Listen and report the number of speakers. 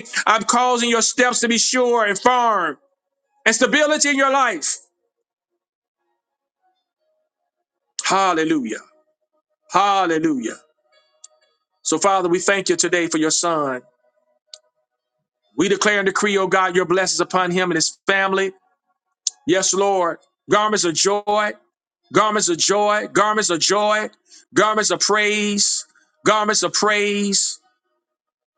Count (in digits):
1